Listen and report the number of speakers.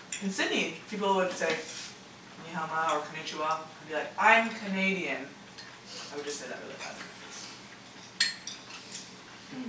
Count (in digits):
1